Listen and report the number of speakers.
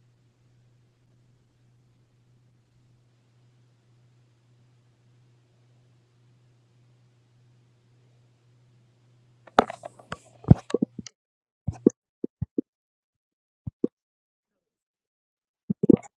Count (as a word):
zero